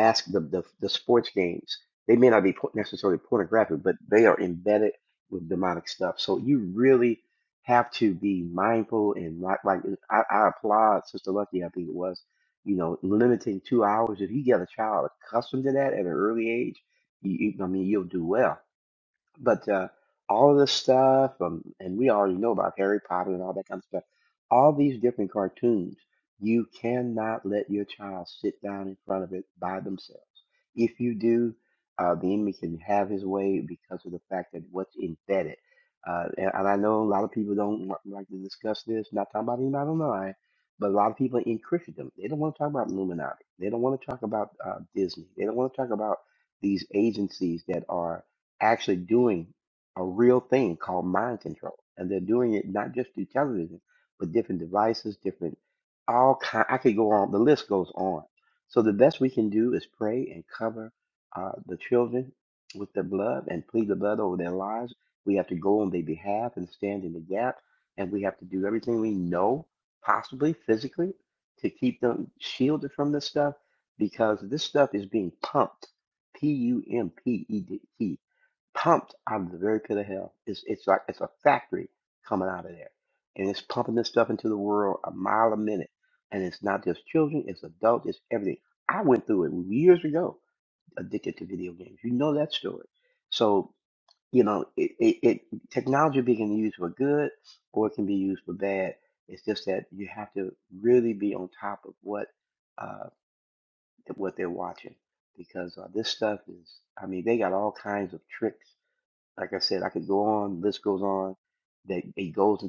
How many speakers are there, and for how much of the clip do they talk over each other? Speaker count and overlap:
1, no overlap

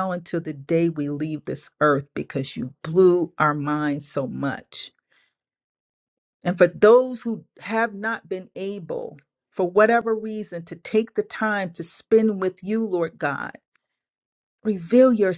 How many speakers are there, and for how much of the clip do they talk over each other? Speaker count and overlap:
1, no overlap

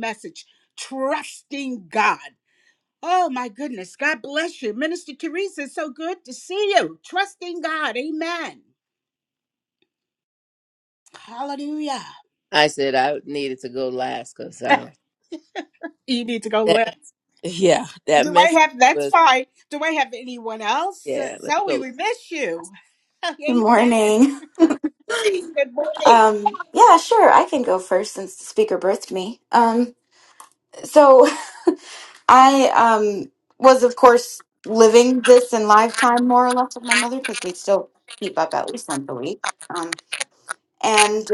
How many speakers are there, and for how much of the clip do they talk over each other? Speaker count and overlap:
3, about 6%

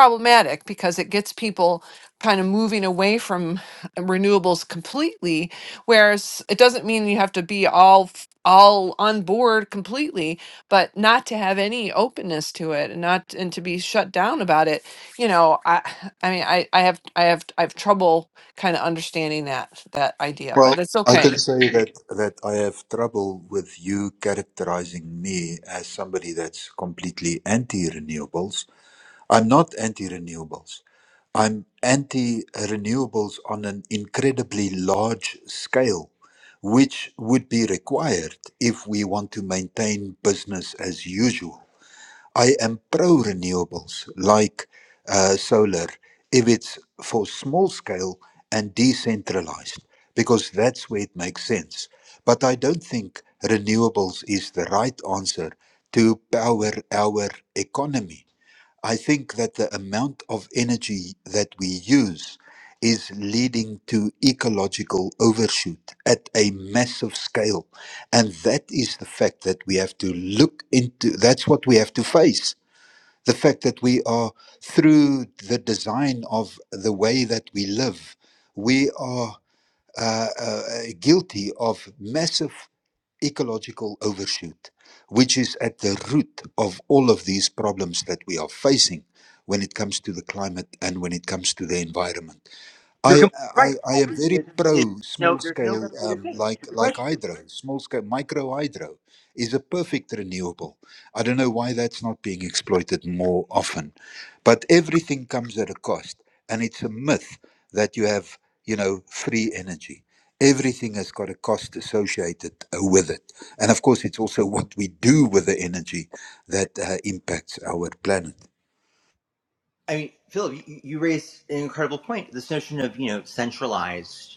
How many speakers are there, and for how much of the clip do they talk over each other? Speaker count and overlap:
3, about 4%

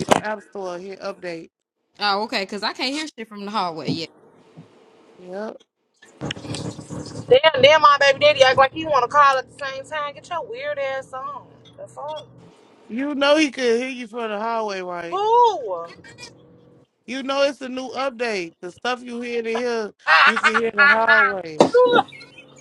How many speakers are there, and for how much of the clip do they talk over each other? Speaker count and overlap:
3, under 1%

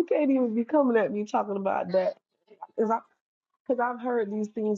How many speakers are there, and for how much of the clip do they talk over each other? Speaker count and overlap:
1, no overlap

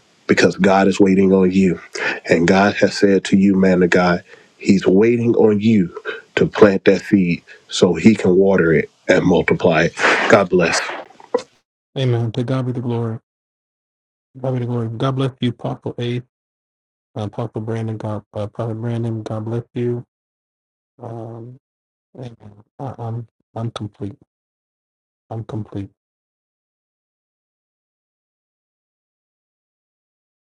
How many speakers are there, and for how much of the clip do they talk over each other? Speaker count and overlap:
2, no overlap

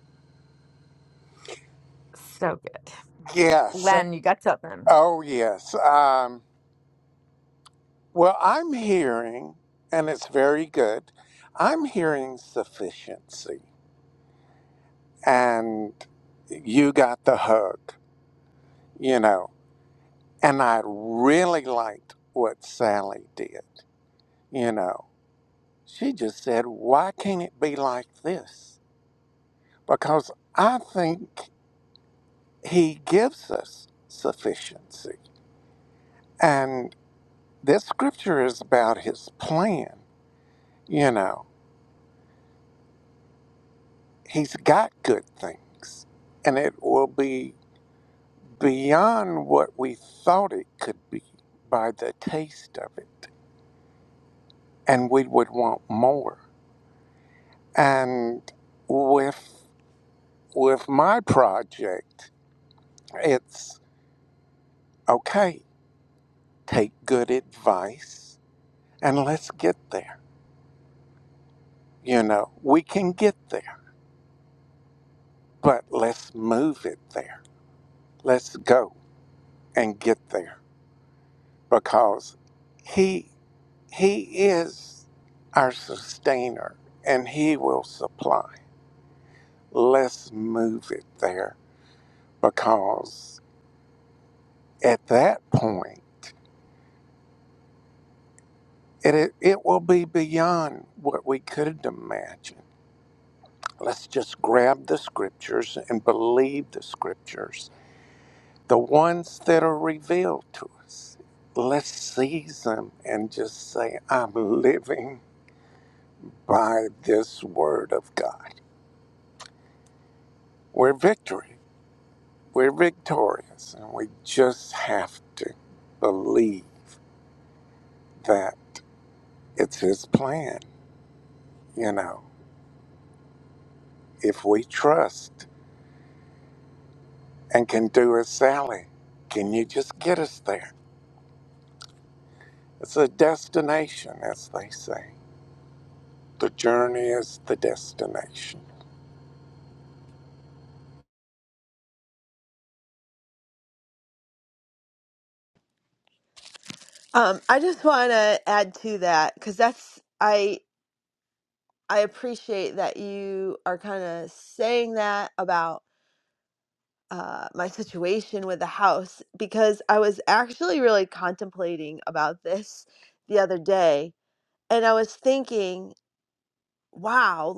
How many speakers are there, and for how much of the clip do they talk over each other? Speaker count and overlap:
3, under 1%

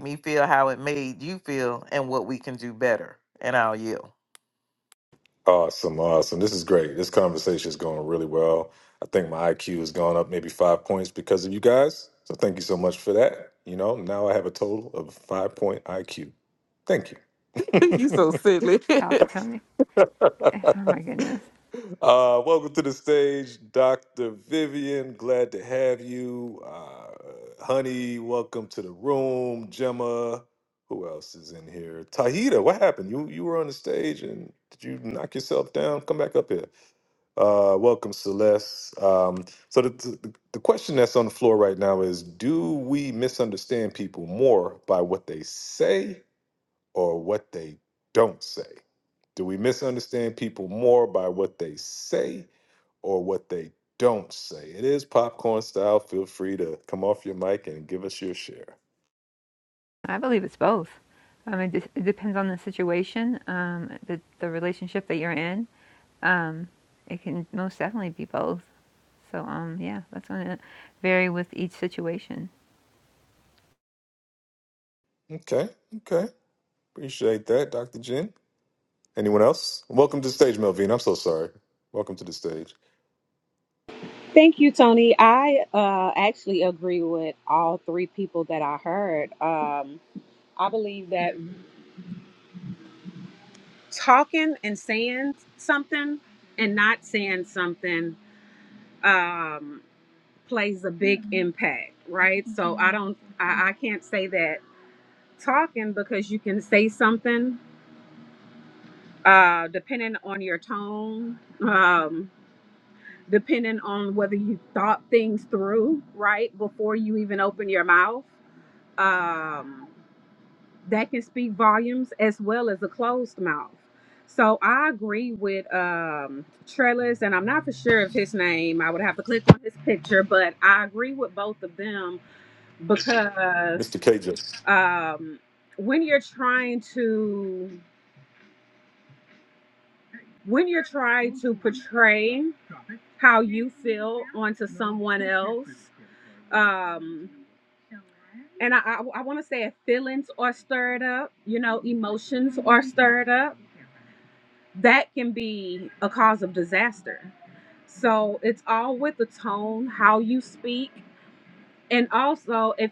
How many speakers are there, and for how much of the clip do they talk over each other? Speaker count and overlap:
4, under 1%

